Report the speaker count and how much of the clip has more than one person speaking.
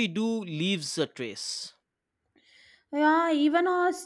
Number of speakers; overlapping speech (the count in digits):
2, no overlap